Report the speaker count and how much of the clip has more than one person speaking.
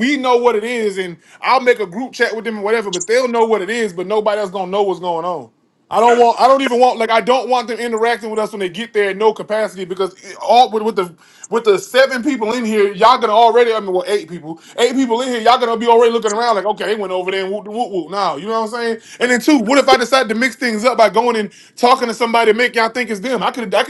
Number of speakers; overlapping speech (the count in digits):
1, no overlap